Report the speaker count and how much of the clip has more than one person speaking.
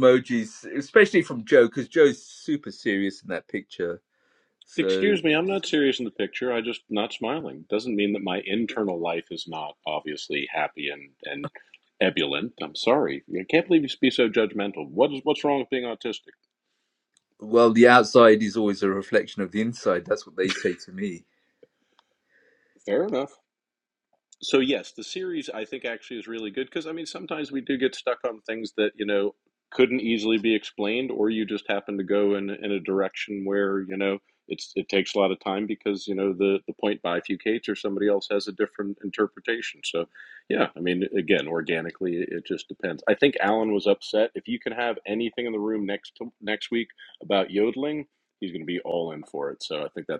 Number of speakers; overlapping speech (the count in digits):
2, about 1%